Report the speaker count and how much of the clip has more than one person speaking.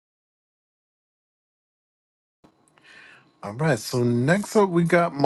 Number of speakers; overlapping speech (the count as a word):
one, no overlap